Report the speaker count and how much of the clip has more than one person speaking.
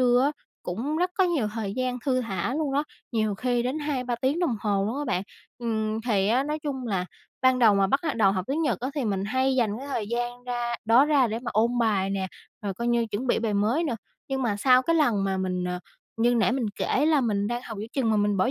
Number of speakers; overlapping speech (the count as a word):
one, no overlap